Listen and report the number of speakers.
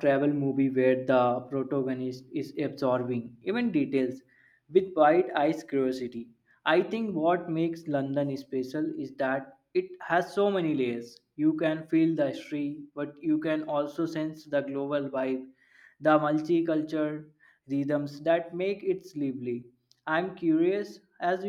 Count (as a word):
one